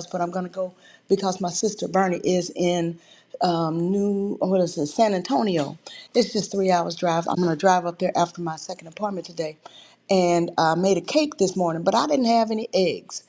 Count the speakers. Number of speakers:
one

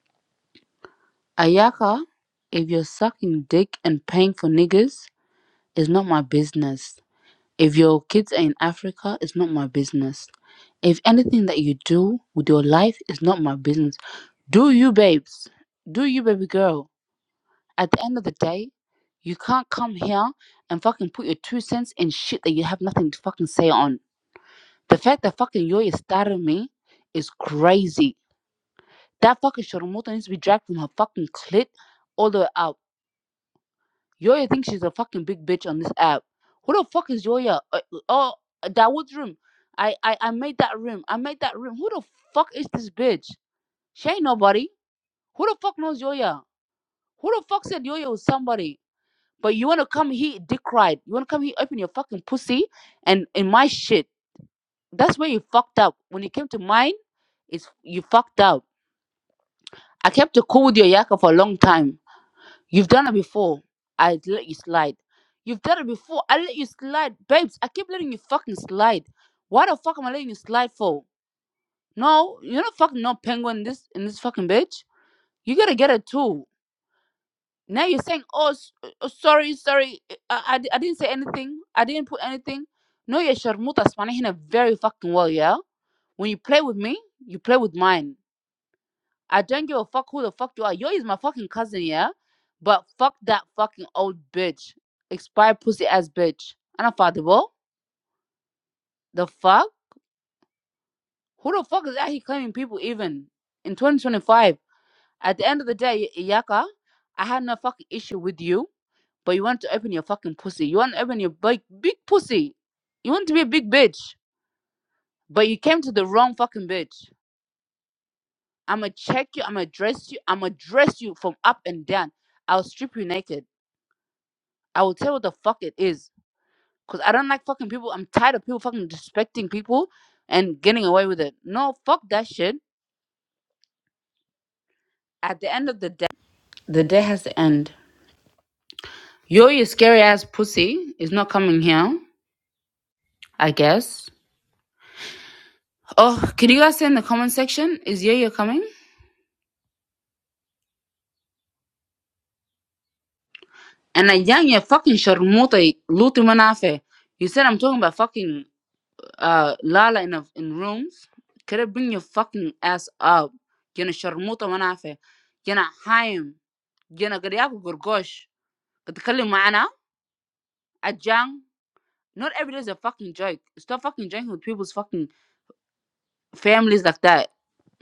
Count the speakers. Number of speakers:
one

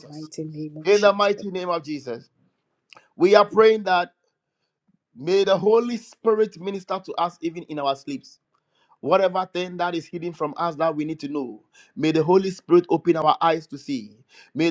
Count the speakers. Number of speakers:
two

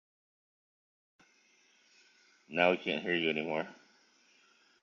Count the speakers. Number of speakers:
one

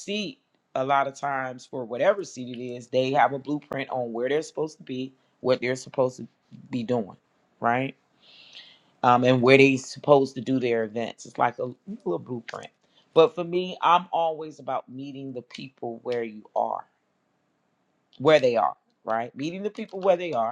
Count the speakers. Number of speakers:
one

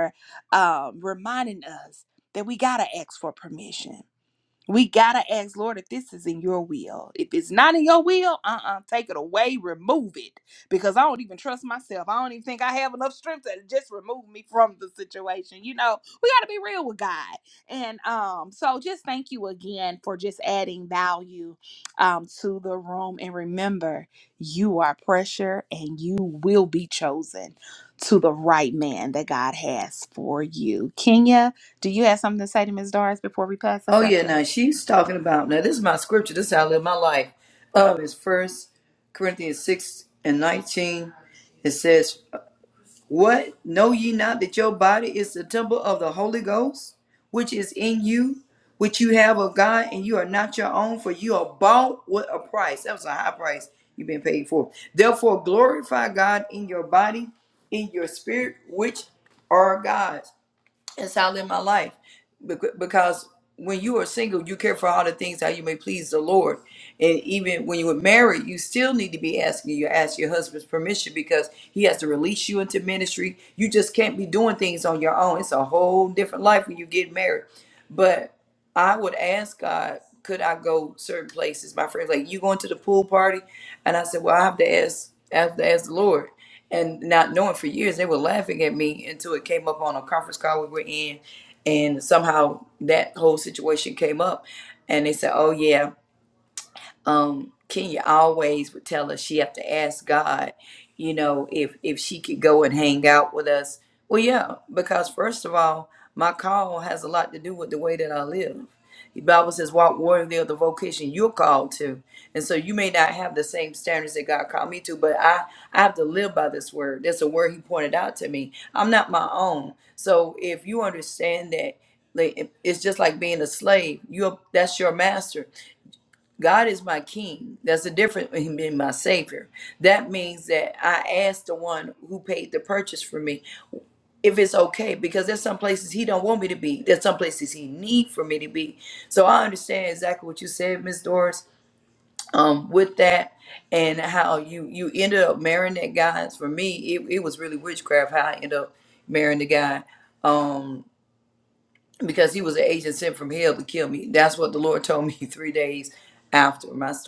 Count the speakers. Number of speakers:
two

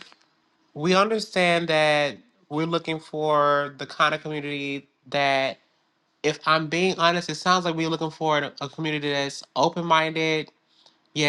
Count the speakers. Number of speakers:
one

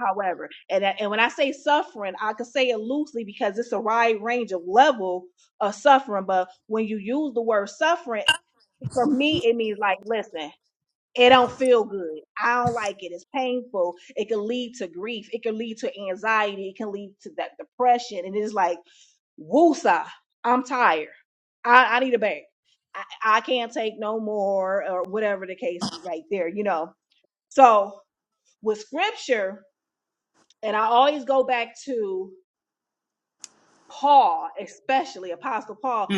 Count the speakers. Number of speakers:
one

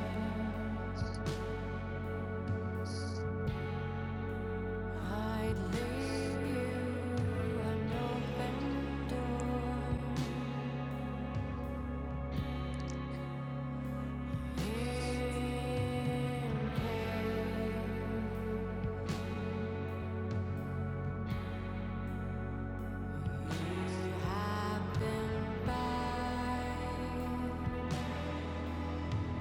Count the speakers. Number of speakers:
zero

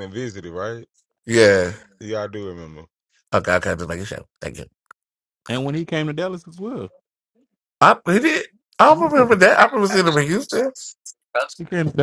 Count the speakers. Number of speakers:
three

